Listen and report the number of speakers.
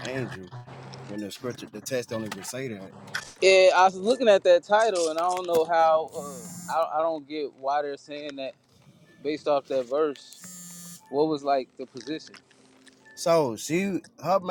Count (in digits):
2